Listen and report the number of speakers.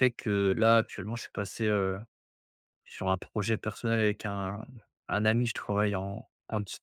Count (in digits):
1